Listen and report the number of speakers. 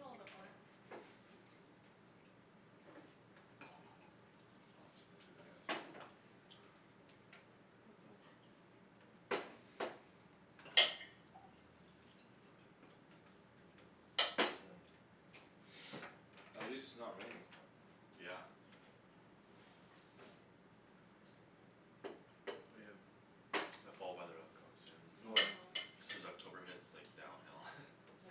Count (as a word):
three